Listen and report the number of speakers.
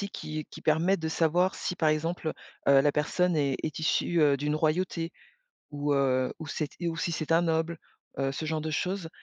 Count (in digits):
1